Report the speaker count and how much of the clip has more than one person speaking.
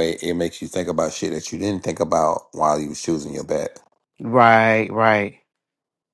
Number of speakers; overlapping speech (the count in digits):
2, no overlap